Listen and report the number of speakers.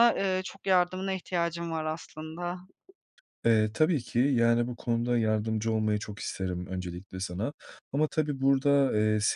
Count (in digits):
2